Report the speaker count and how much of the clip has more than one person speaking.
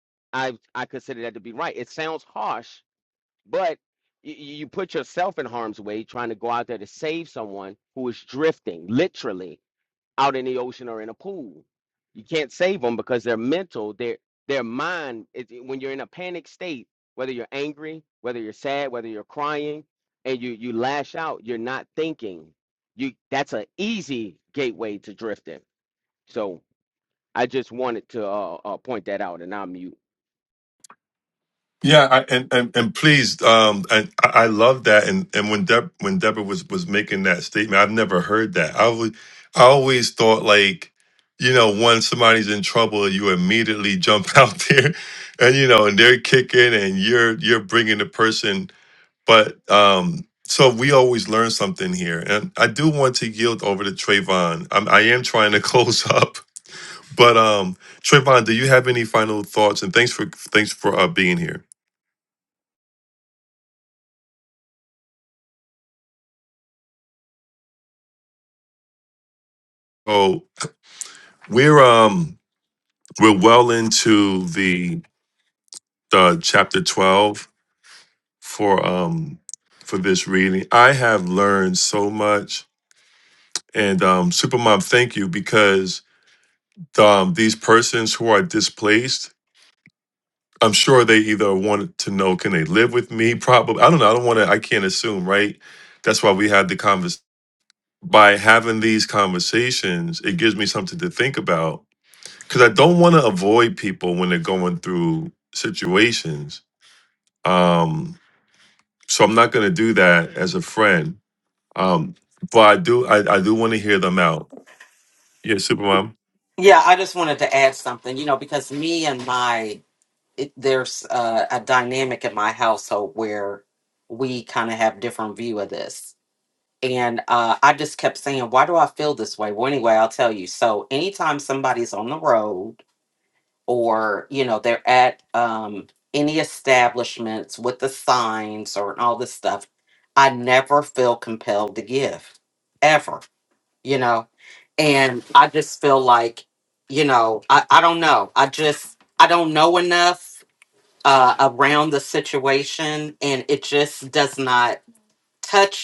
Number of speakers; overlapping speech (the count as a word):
three, no overlap